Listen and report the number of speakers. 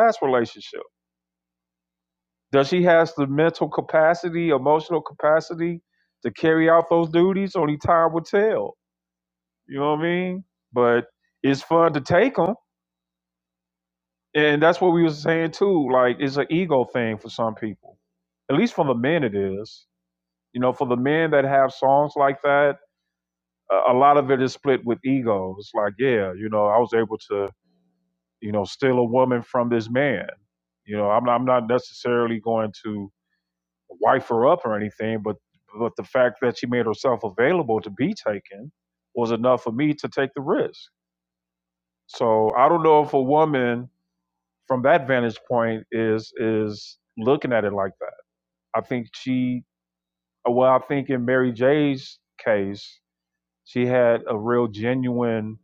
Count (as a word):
one